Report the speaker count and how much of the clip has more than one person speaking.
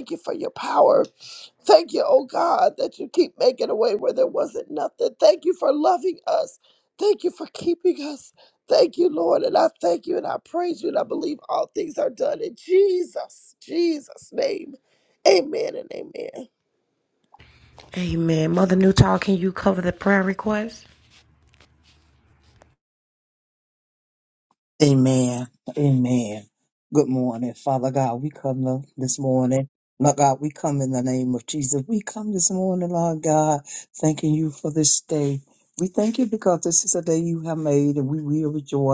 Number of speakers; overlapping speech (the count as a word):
three, no overlap